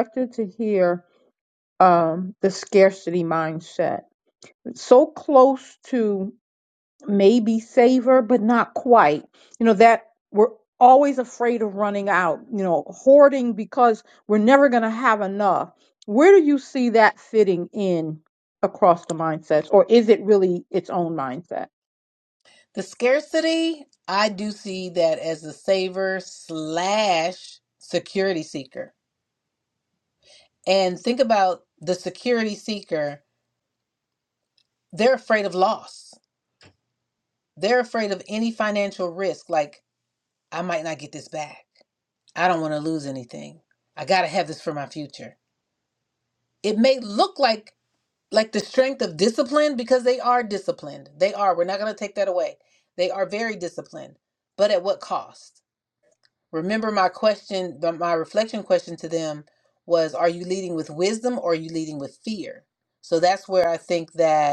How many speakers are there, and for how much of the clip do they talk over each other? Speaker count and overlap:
2, no overlap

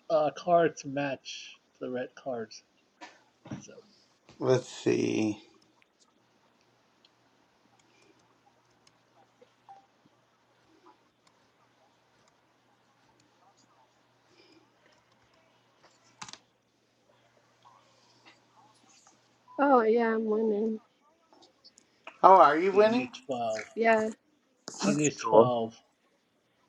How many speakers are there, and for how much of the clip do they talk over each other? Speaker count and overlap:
3, about 1%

